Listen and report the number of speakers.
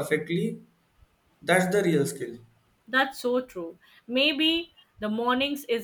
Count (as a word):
two